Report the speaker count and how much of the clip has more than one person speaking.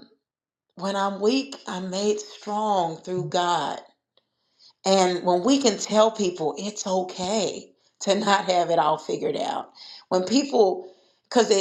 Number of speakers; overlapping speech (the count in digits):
1, no overlap